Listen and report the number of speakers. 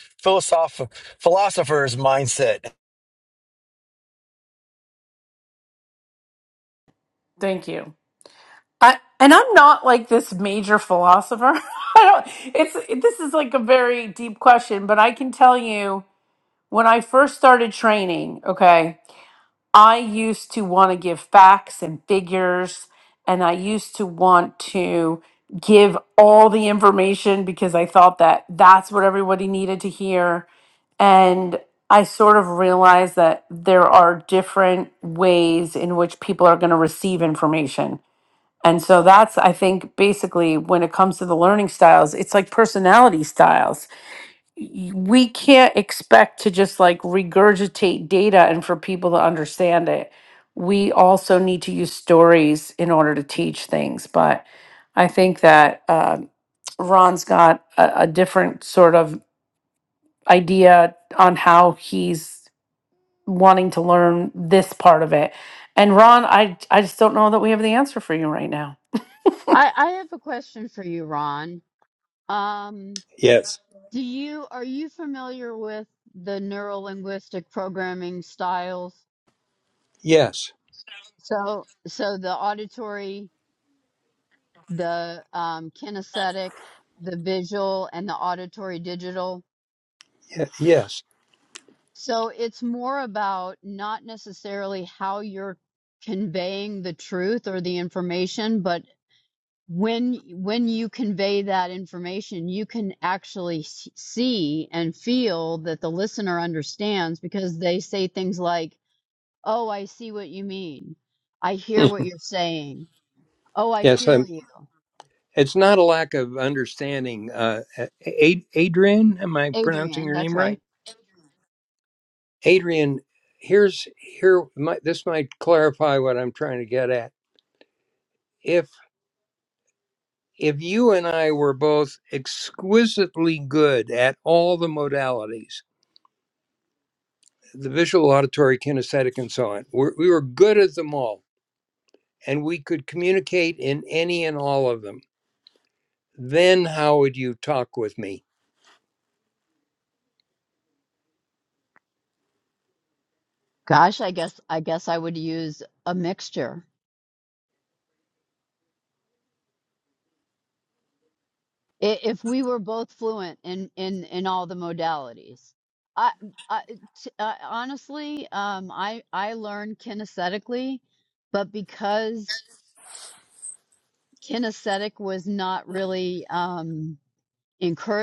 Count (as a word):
four